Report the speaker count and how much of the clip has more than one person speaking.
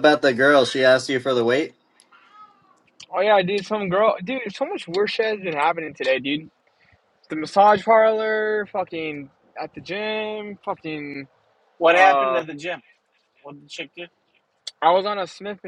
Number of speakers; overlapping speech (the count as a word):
three, about 3%